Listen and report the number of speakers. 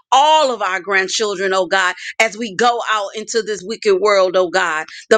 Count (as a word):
one